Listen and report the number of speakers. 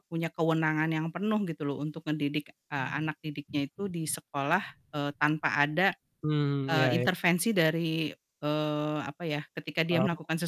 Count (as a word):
two